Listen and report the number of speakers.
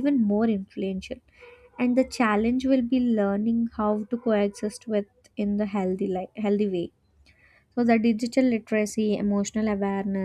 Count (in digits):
1